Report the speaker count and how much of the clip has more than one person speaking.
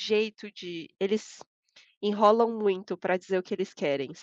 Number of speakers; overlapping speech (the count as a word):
one, no overlap